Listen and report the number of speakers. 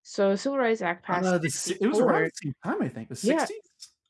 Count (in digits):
2